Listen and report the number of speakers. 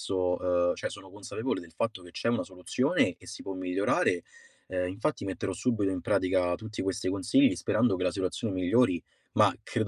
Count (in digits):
1